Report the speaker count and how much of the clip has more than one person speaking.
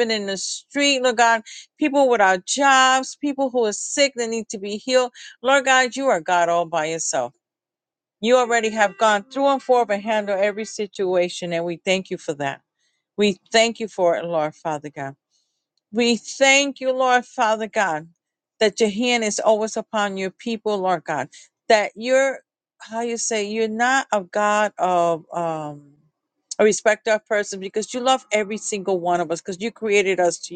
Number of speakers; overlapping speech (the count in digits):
1, no overlap